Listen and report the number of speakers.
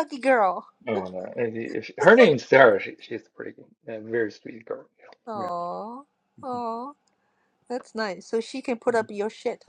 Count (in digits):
2